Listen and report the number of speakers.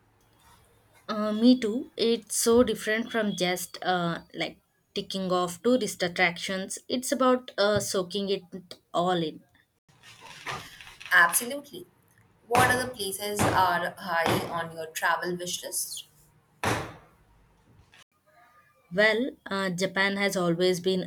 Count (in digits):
2